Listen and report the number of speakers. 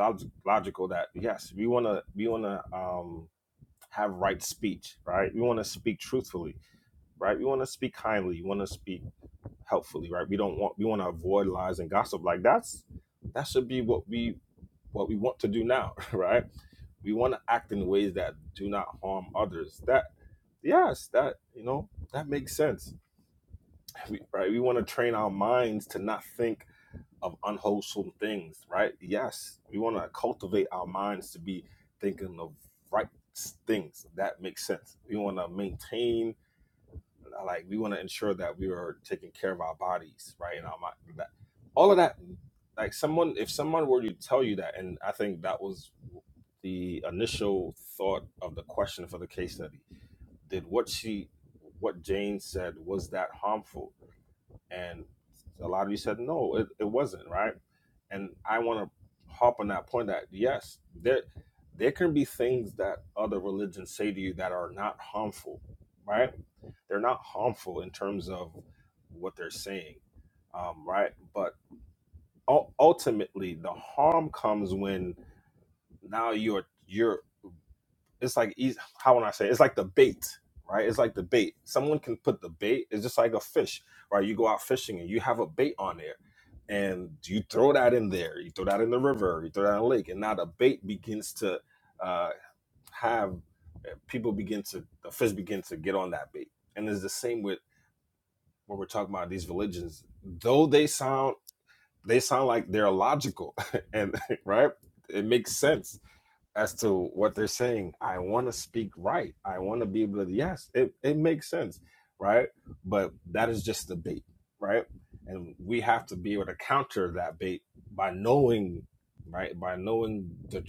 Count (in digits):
1